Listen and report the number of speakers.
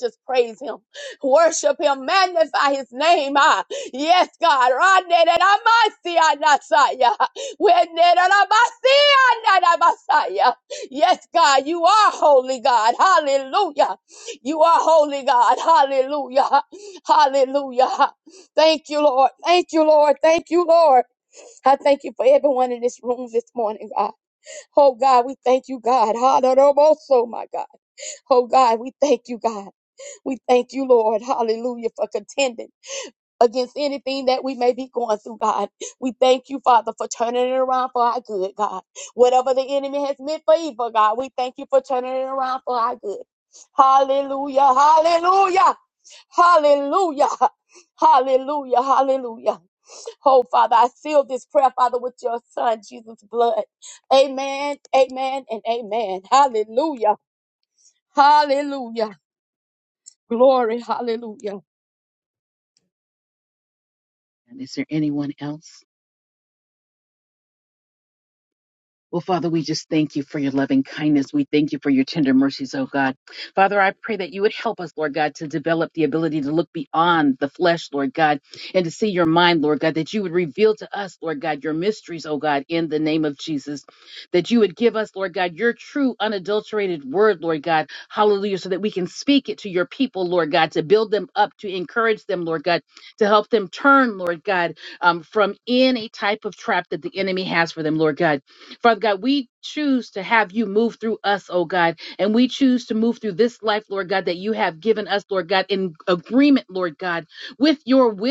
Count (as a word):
two